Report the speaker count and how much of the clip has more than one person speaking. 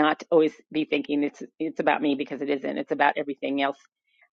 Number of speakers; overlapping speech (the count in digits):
1, no overlap